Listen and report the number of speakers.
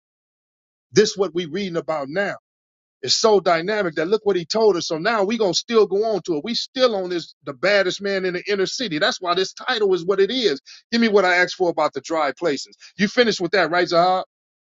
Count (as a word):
one